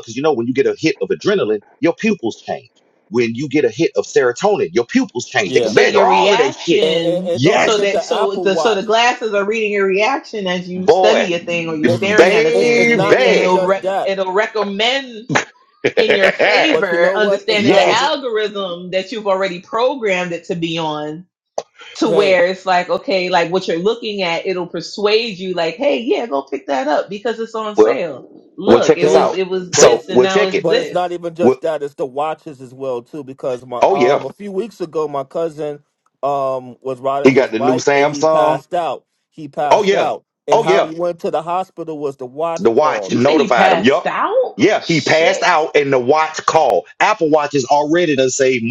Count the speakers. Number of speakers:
3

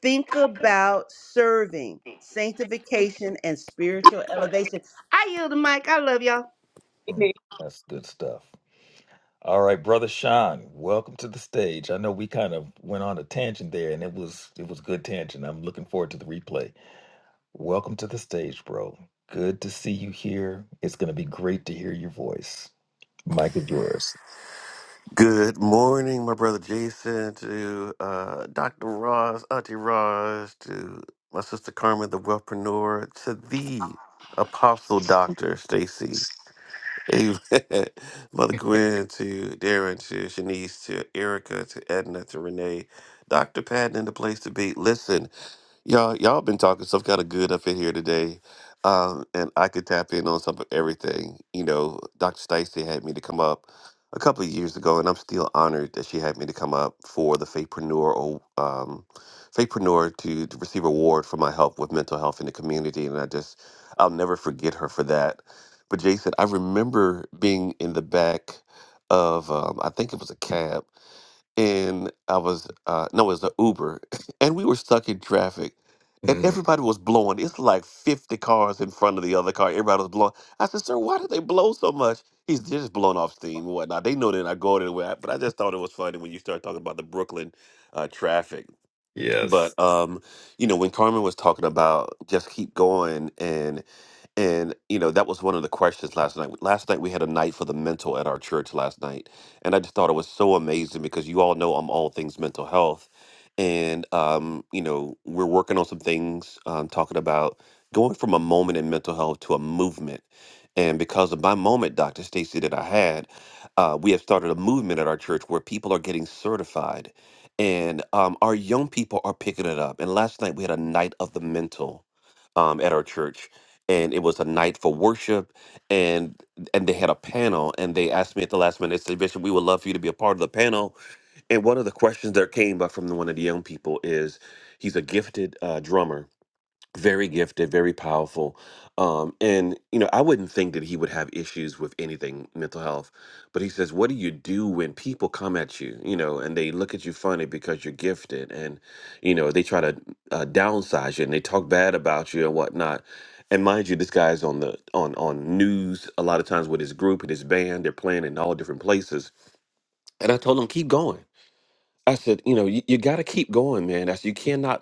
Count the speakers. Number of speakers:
3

